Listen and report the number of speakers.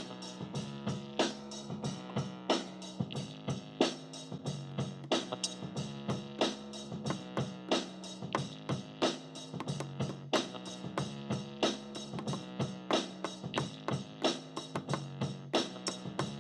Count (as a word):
zero